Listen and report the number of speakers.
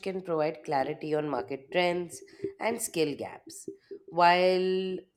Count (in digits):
1